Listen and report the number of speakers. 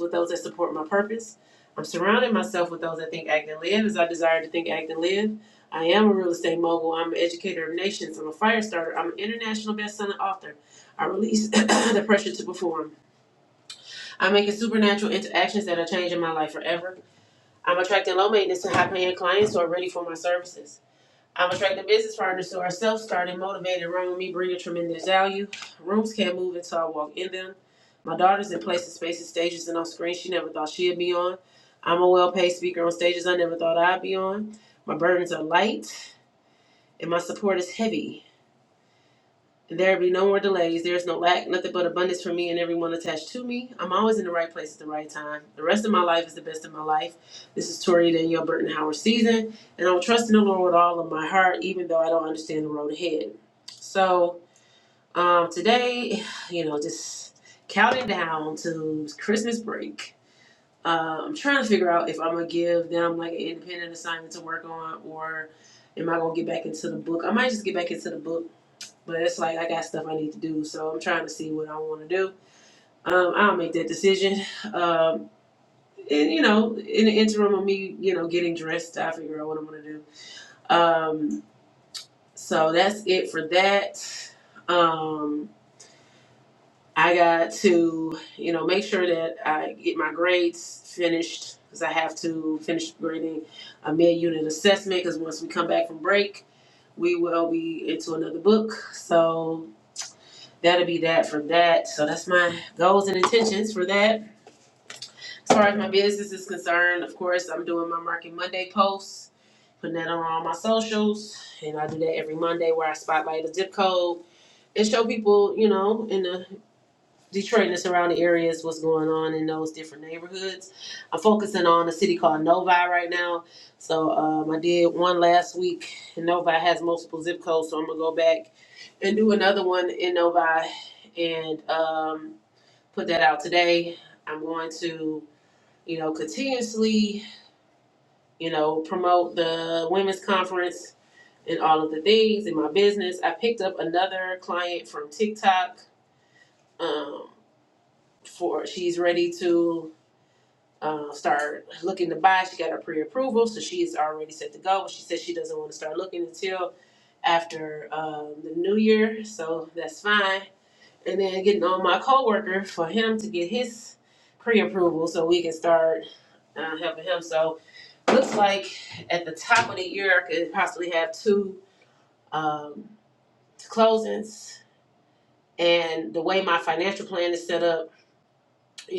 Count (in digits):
1